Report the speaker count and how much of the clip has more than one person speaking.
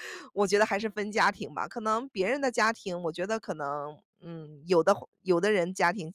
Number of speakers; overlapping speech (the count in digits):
1, no overlap